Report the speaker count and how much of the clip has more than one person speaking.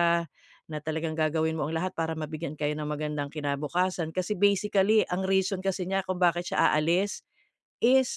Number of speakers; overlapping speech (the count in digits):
1, no overlap